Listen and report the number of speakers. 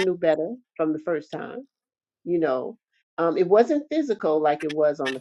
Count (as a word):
one